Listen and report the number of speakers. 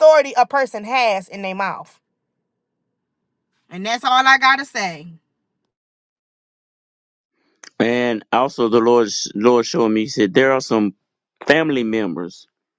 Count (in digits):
2